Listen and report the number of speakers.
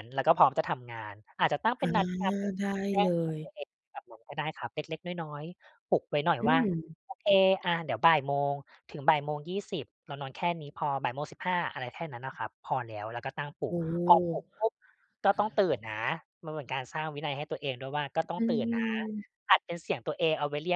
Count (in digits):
2